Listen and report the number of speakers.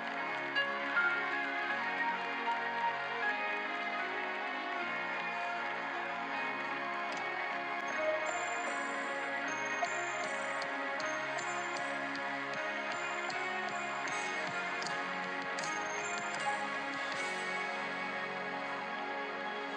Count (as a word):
zero